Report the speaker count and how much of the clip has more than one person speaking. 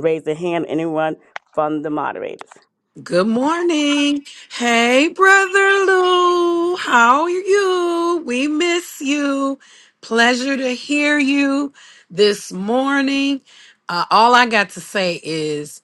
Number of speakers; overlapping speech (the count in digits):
2, no overlap